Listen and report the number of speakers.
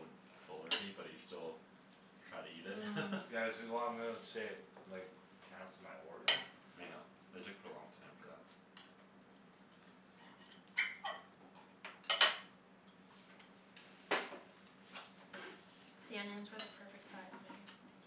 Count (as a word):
three